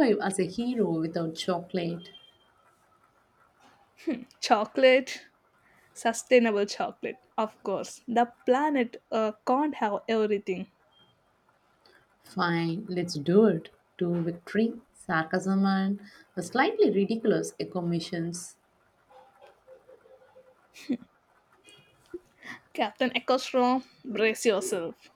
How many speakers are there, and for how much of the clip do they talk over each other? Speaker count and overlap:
2, no overlap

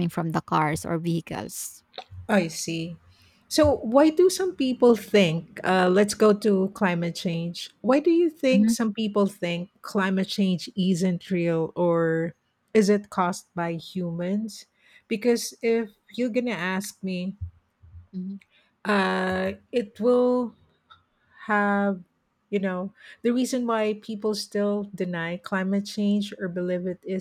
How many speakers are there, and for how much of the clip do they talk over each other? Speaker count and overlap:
2, about 1%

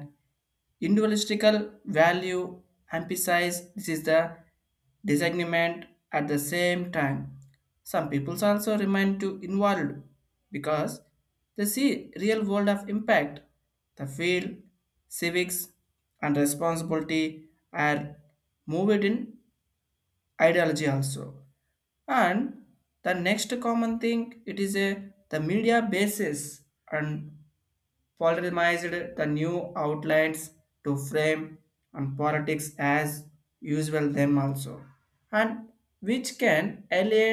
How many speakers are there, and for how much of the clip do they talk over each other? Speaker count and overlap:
1, no overlap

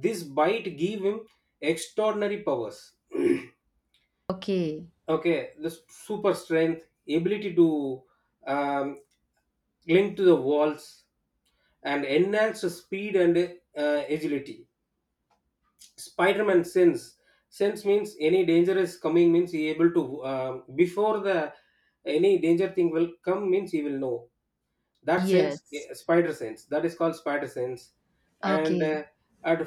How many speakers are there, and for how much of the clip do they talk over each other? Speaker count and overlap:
2, about 3%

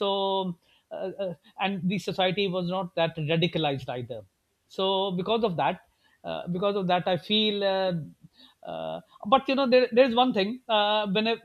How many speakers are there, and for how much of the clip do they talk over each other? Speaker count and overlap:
1, no overlap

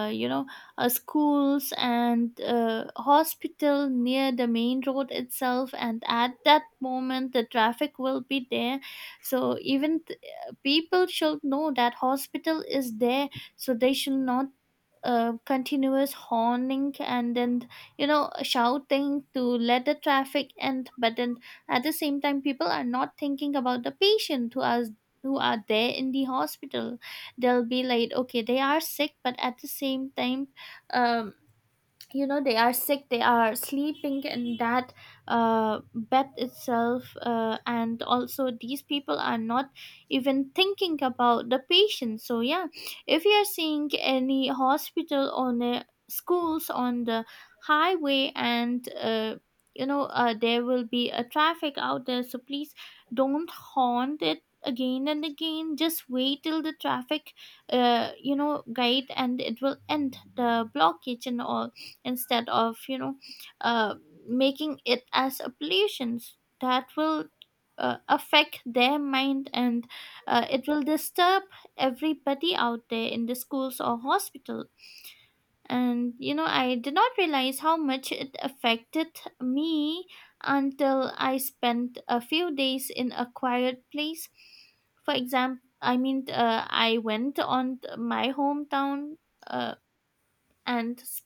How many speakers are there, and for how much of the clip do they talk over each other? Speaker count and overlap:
1, no overlap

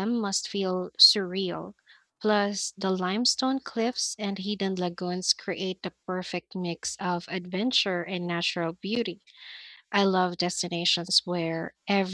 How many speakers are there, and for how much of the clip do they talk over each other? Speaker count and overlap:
1, no overlap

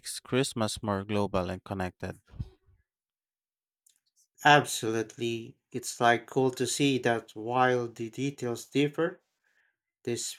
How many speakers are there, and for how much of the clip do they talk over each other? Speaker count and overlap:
2, no overlap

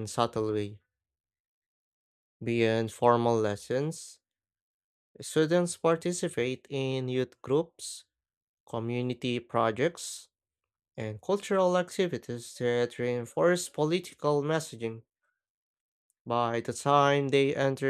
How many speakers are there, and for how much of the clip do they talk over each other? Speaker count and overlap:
1, no overlap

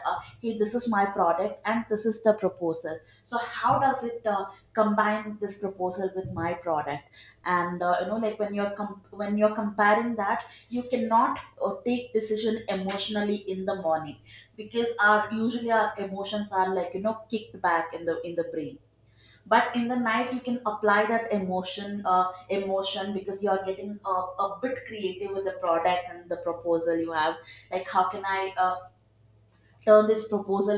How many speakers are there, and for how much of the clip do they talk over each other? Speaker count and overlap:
1, no overlap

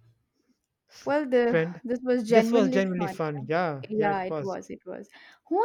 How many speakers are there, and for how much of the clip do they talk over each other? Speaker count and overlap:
2, about 31%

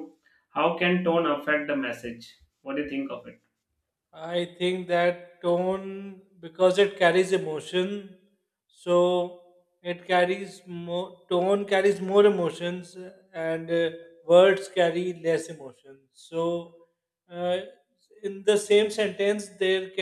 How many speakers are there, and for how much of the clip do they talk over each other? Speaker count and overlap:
2, no overlap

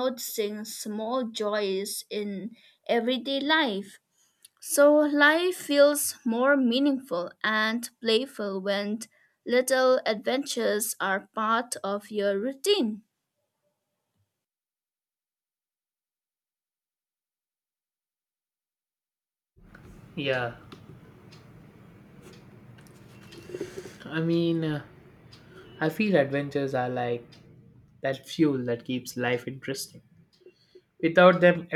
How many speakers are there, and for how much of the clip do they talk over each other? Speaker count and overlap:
2, no overlap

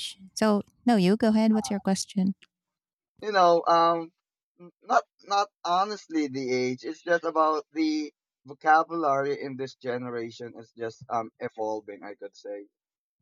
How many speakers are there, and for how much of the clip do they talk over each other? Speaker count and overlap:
2, no overlap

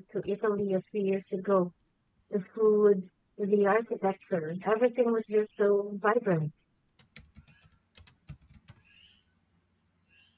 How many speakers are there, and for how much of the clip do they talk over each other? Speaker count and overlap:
1, no overlap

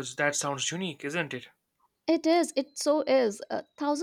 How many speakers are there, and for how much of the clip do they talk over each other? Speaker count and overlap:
2, no overlap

